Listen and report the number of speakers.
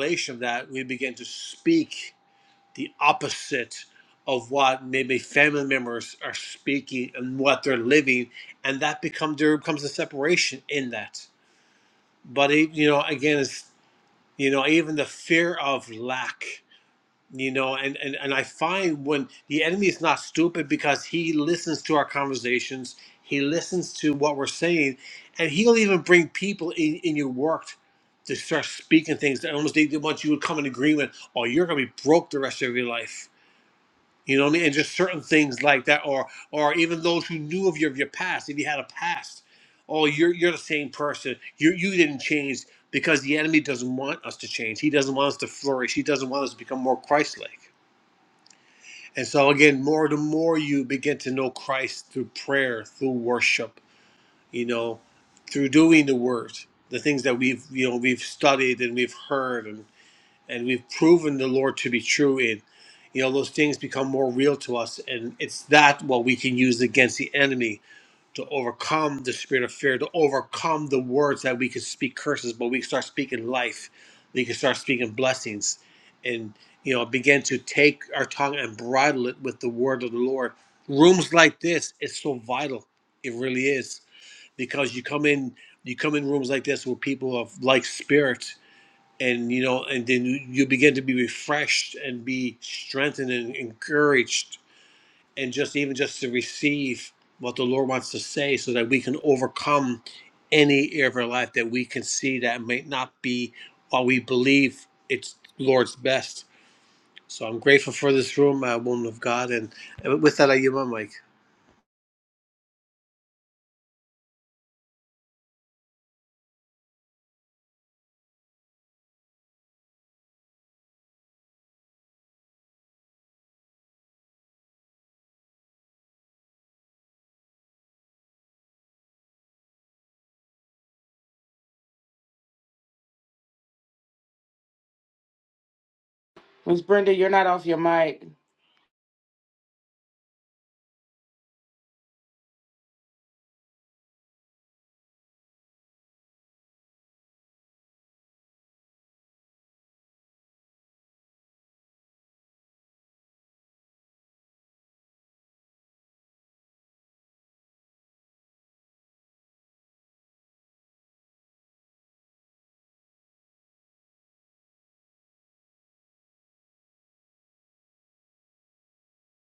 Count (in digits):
2